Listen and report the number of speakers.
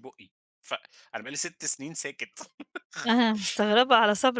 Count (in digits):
2